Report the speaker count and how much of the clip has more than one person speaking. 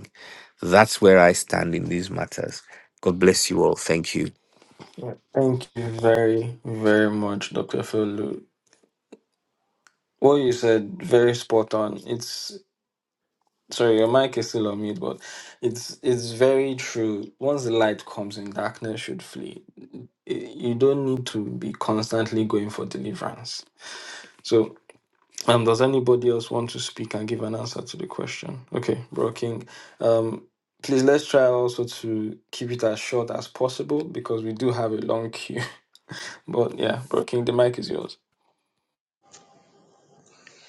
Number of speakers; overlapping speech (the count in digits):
2, no overlap